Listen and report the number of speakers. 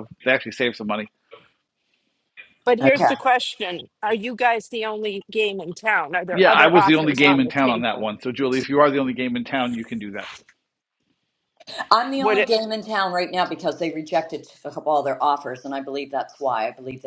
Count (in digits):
3